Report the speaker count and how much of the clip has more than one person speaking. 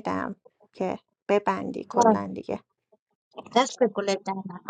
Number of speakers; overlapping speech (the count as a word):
two, about 5%